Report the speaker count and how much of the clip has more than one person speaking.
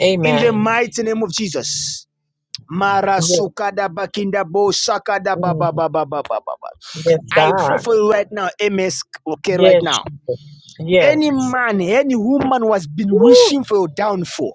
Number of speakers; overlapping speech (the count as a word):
two, about 20%